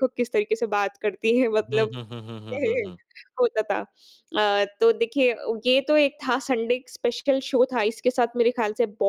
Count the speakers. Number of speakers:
2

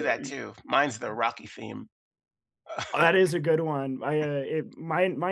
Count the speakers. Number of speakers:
2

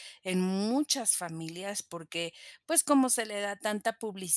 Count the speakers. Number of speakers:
1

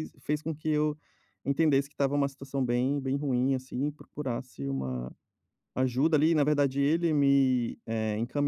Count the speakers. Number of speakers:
1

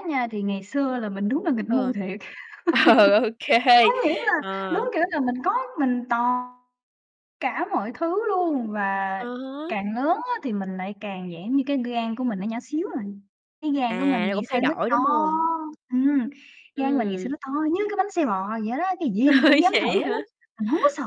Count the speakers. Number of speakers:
2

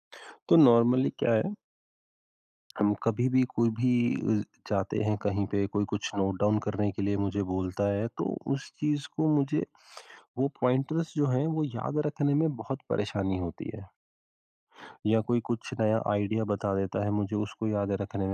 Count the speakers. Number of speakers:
1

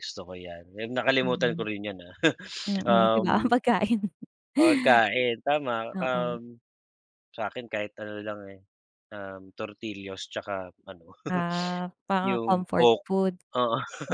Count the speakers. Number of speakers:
2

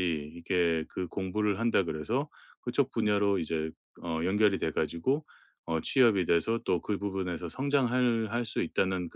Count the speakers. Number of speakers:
1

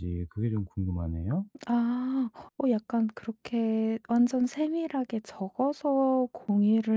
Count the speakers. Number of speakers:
2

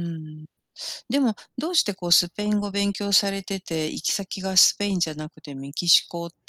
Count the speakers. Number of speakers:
1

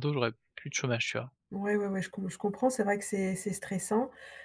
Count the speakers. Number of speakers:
2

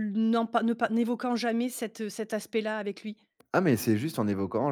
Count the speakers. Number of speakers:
2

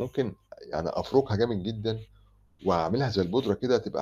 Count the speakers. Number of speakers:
1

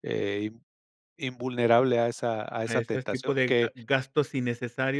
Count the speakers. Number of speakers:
2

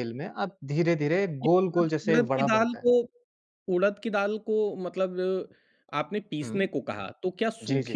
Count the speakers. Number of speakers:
2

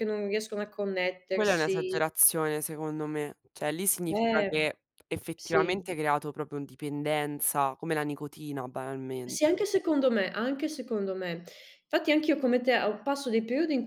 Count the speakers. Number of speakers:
2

